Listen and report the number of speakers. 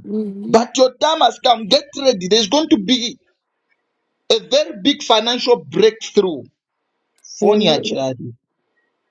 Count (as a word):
two